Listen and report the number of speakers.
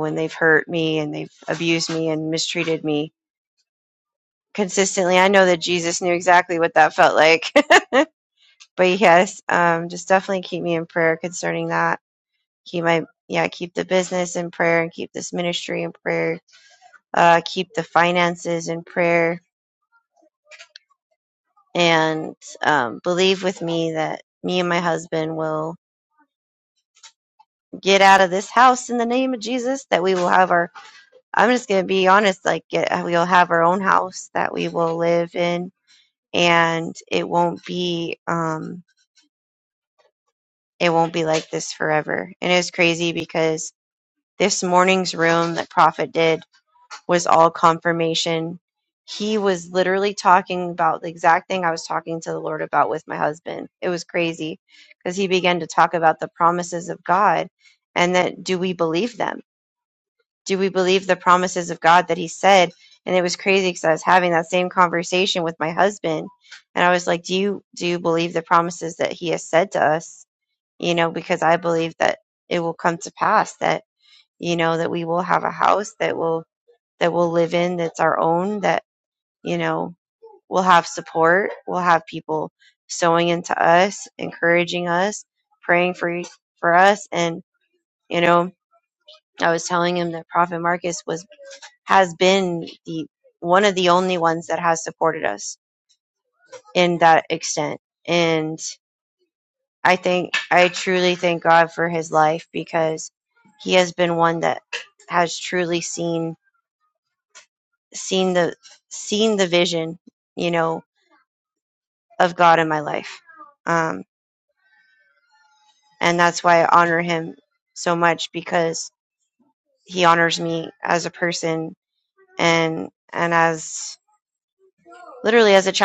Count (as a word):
one